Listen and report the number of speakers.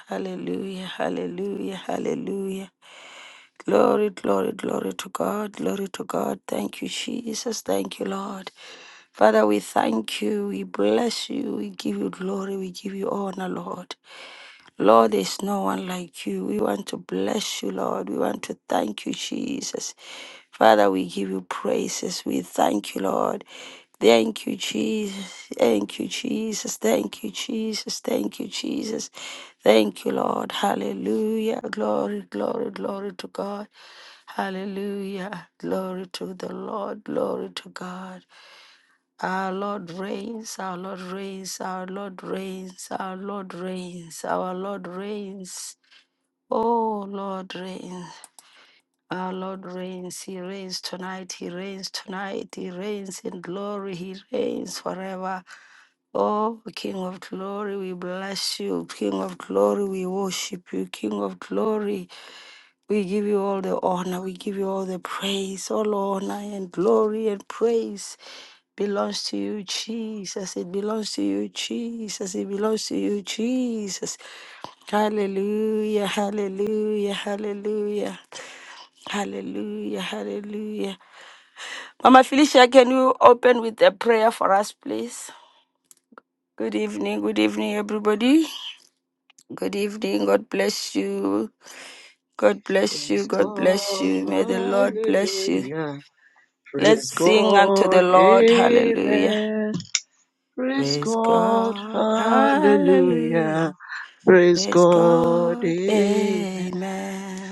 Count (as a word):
two